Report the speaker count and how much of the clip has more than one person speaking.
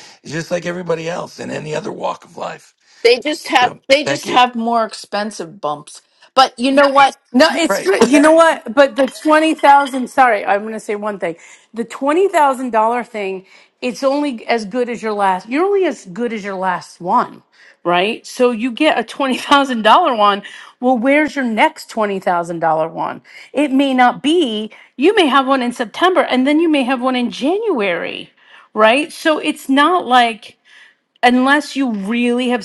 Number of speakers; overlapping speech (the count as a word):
three, about 3%